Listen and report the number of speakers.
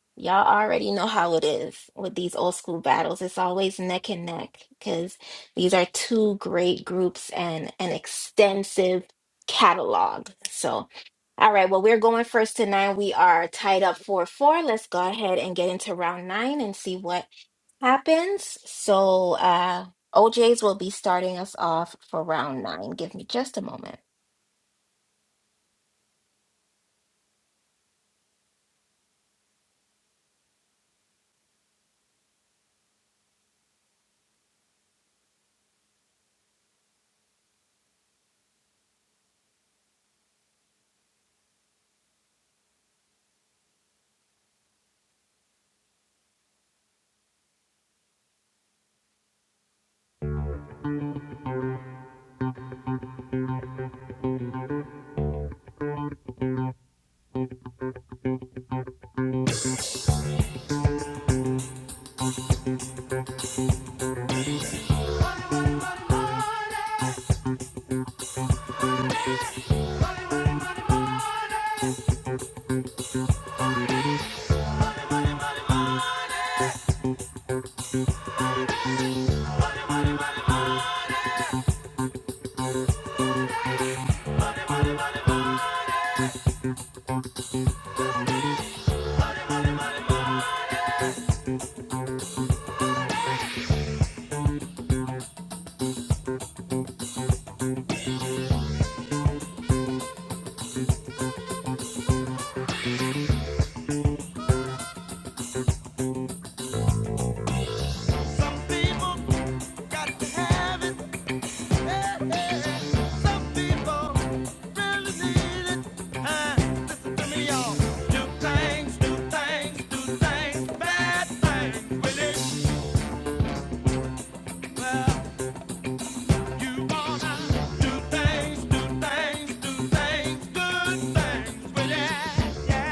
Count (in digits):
2